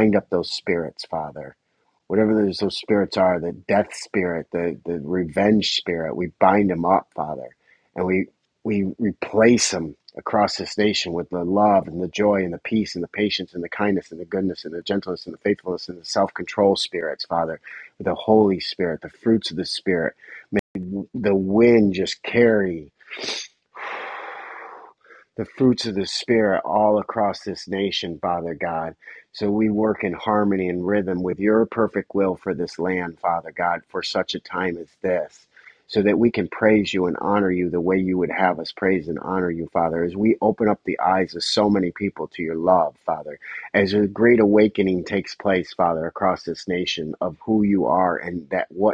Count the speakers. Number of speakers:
one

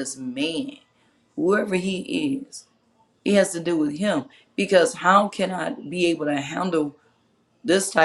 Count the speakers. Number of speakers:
one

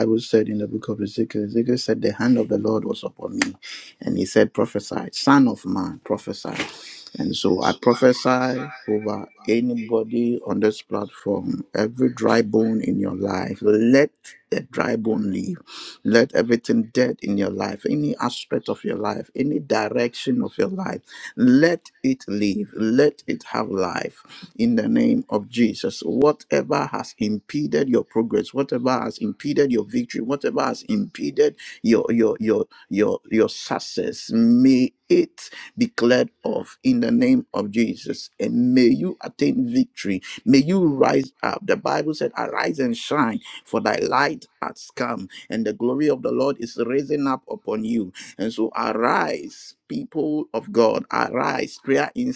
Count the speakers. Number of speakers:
one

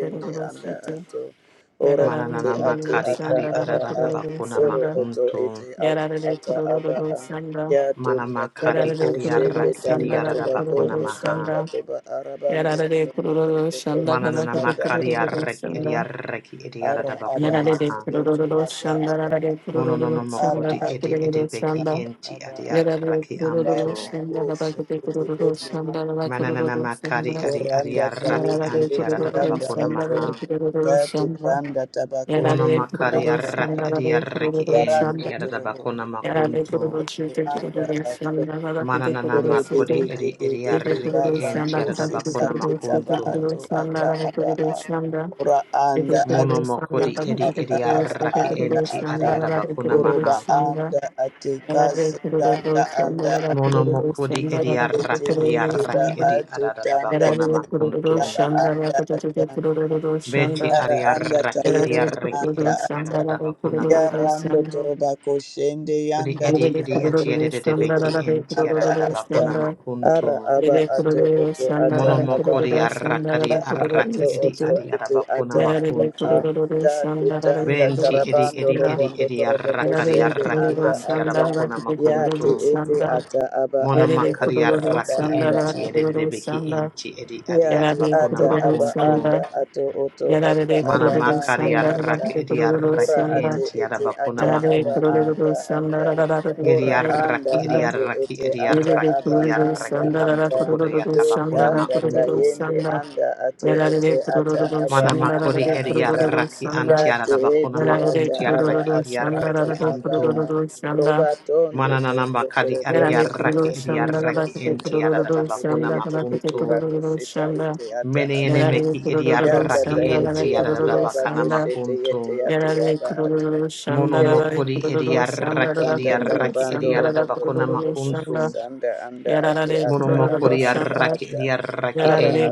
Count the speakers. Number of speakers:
three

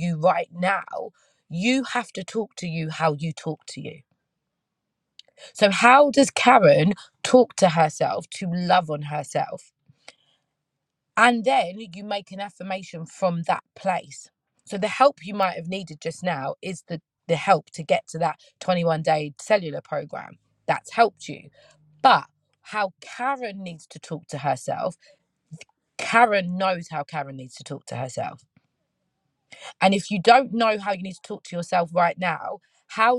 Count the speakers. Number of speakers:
one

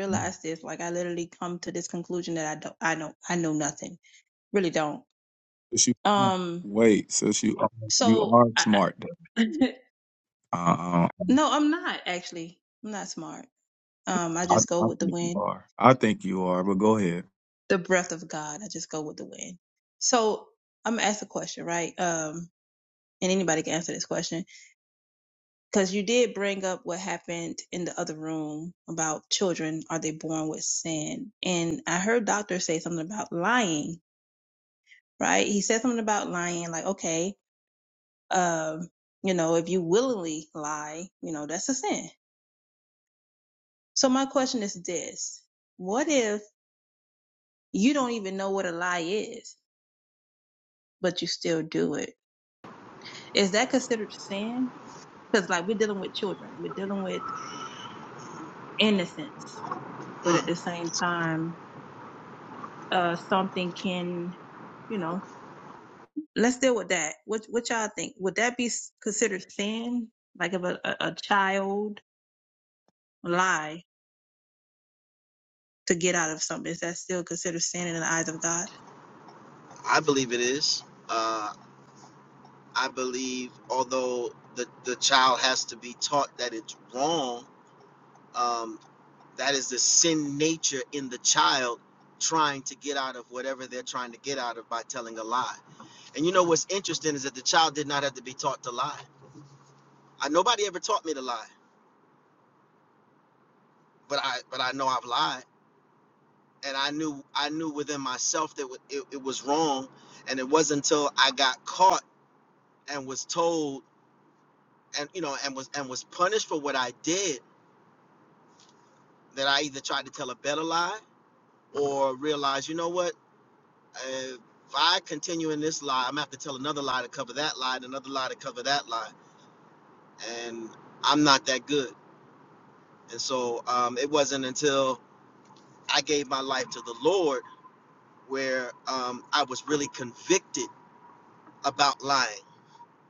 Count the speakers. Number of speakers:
three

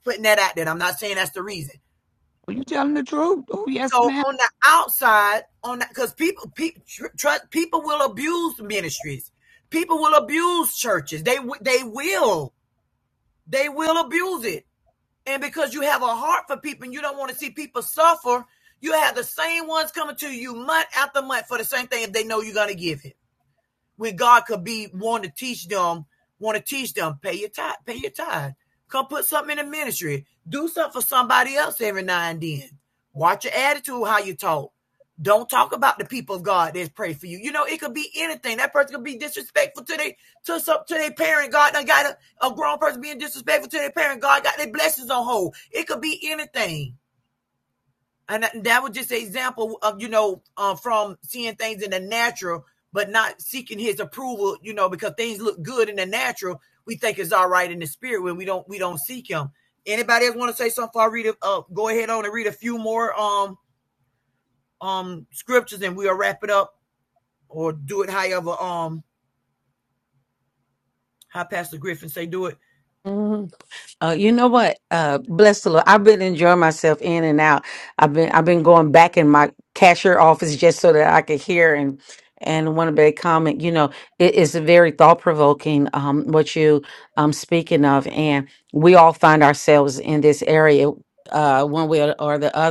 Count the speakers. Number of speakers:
three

